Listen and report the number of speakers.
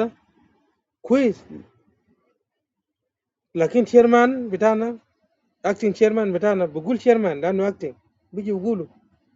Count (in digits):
1